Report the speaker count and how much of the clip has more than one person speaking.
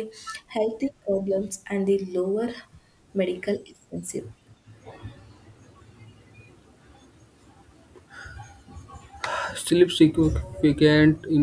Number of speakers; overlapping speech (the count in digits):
2, no overlap